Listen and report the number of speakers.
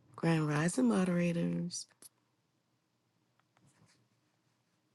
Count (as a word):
one